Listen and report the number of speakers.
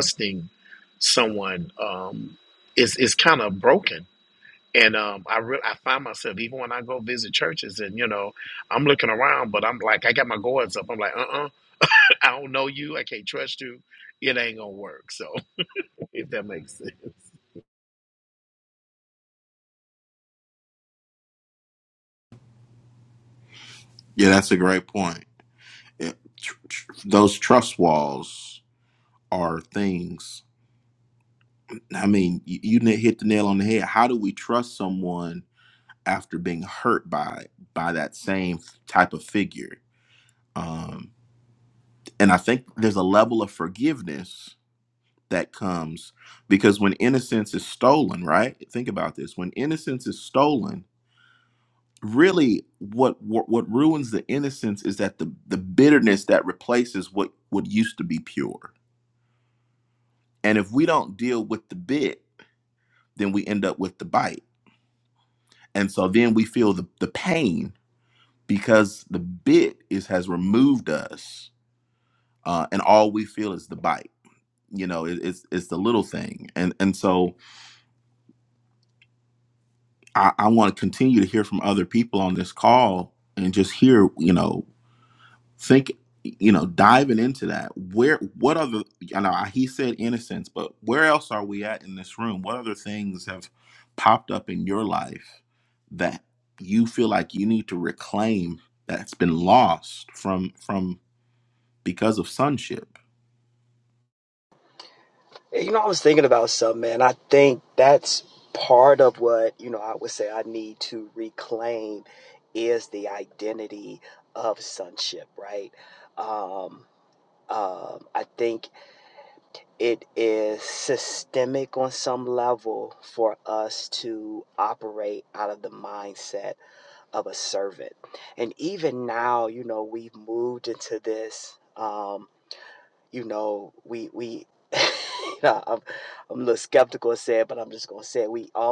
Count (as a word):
three